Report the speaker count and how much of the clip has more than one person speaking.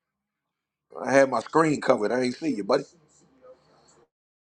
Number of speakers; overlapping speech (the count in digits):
1, no overlap